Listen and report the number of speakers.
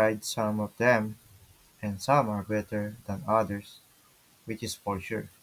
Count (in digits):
1